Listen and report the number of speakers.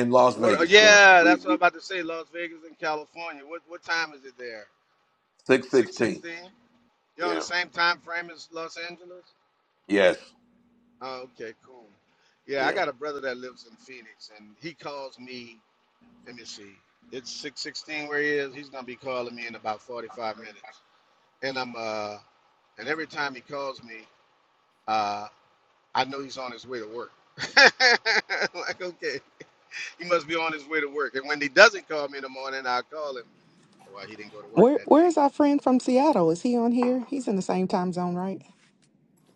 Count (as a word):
three